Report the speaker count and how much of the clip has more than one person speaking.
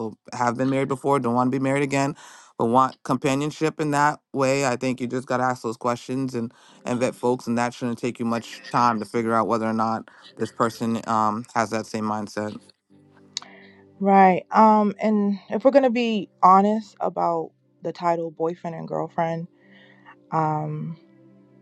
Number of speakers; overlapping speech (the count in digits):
2, no overlap